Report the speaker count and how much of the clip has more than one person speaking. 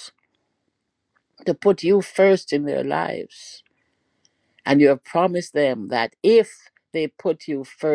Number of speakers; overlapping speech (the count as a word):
one, no overlap